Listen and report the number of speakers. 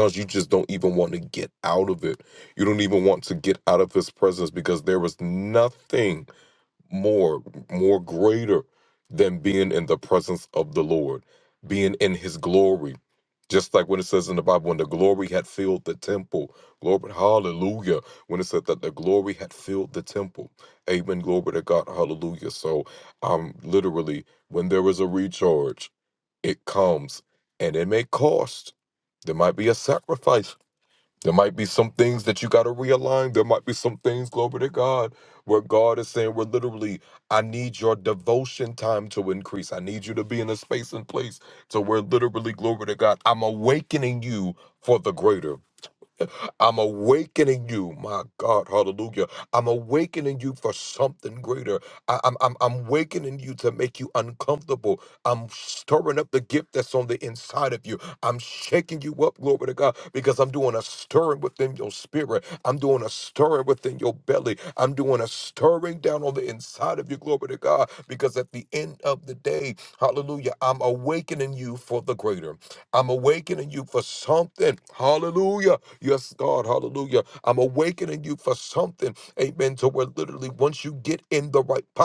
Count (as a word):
one